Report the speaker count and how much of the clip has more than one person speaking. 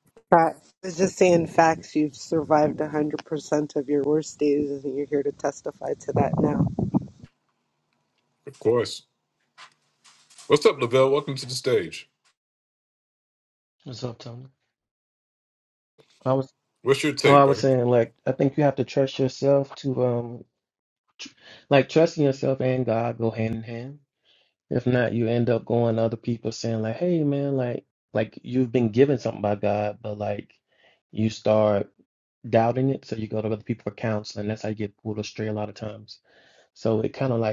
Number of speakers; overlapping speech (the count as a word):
three, about 1%